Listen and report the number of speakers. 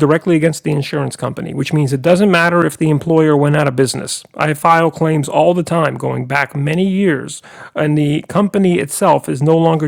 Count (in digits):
1